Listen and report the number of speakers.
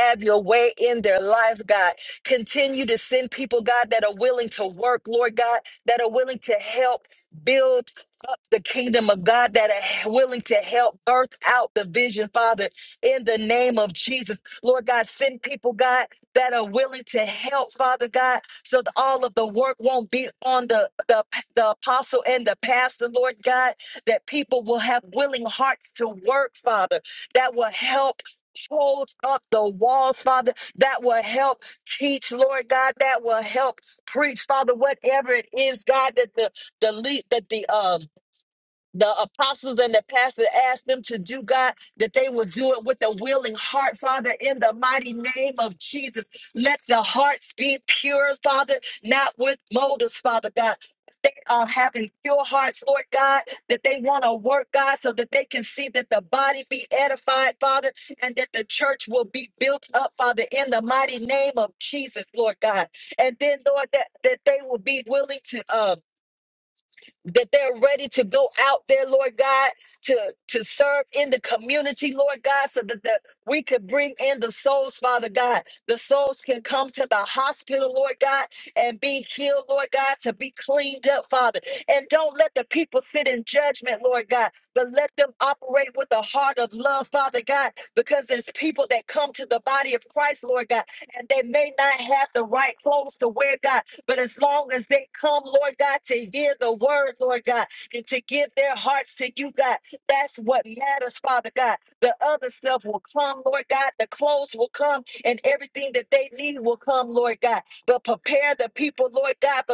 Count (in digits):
1